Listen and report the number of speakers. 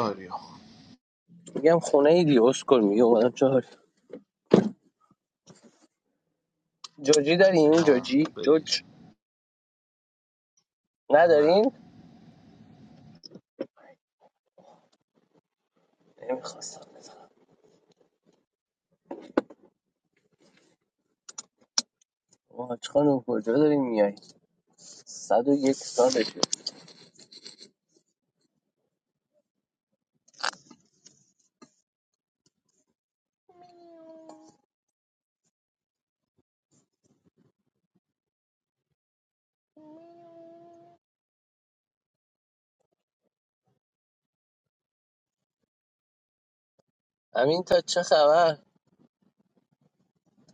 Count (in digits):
2